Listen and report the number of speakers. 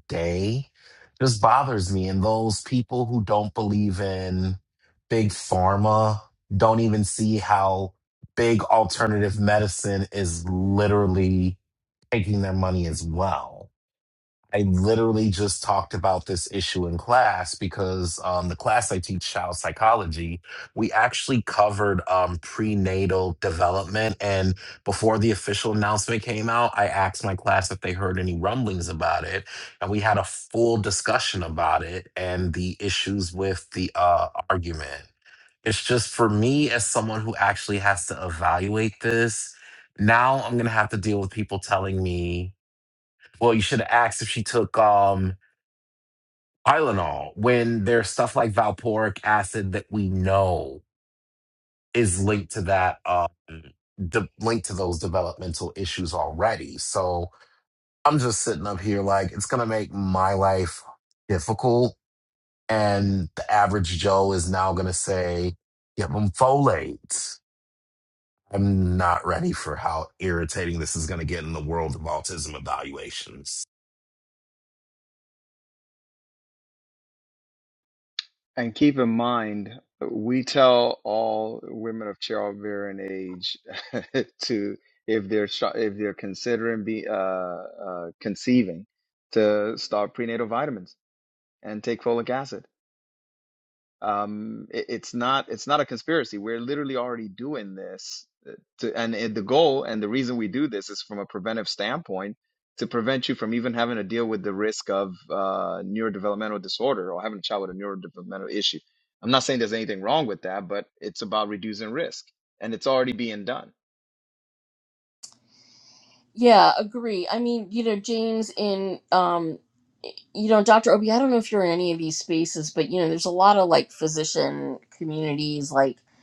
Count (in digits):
3